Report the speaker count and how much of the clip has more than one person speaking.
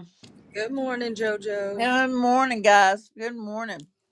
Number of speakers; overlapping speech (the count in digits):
2, about 4%